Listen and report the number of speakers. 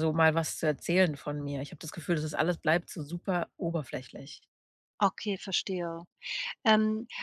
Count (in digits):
2